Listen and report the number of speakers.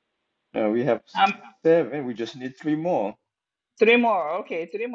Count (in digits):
2